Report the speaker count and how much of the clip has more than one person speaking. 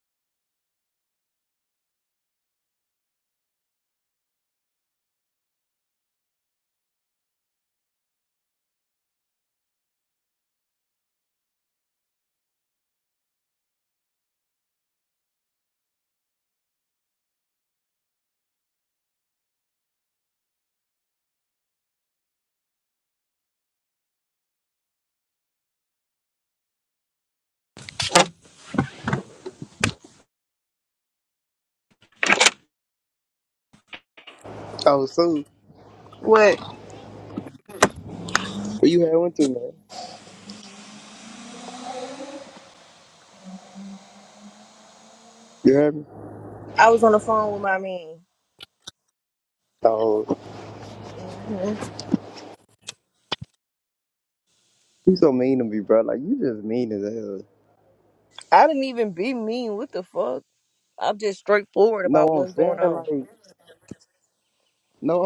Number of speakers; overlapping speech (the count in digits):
2, about 1%